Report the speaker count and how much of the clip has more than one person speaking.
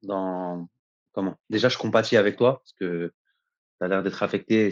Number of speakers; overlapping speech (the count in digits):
1, no overlap